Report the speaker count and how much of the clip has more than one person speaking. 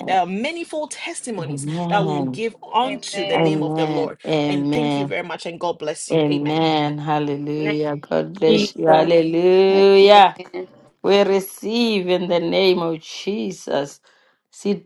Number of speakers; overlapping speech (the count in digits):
3, about 34%